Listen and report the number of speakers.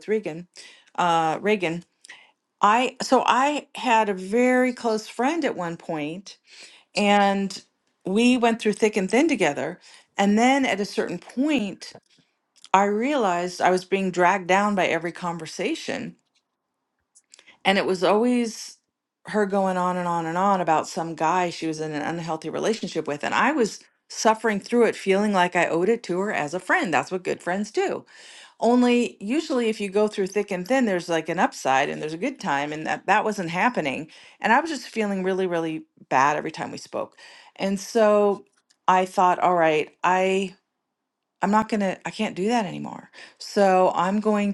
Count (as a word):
one